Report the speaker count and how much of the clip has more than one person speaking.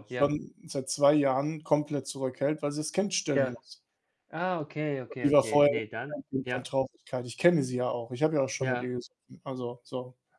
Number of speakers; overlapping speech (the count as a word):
two, about 14%